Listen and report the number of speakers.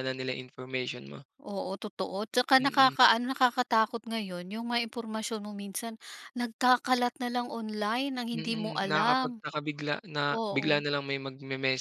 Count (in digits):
2